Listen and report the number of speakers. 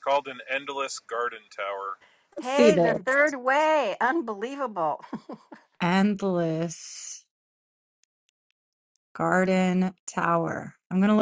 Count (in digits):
3